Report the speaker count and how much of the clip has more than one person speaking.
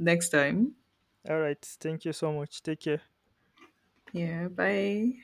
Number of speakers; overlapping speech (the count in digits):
2, no overlap